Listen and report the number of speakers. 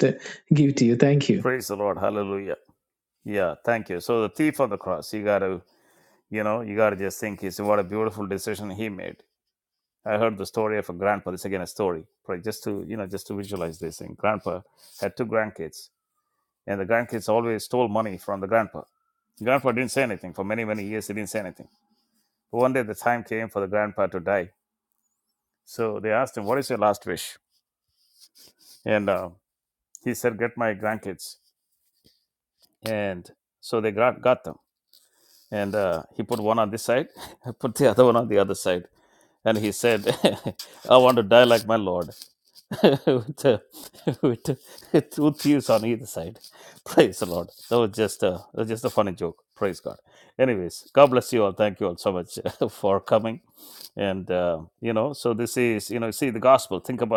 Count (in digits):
2